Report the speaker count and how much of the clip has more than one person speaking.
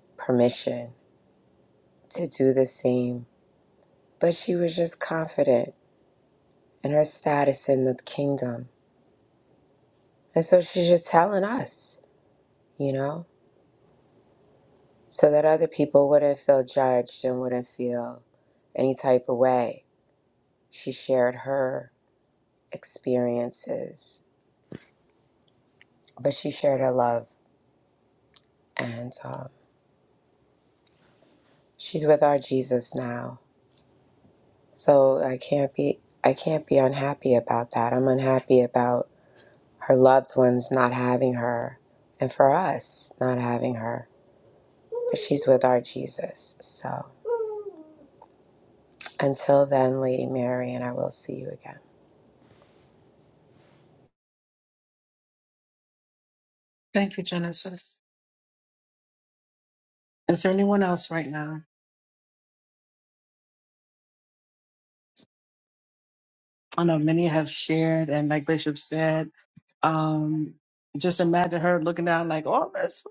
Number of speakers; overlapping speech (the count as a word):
two, no overlap